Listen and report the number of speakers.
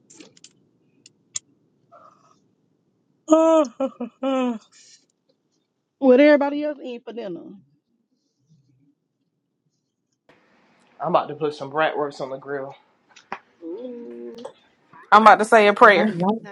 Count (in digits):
4